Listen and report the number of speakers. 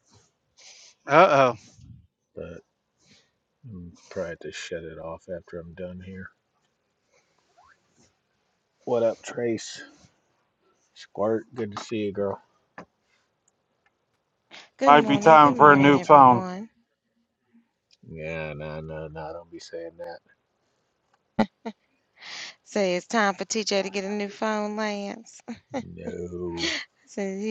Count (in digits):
3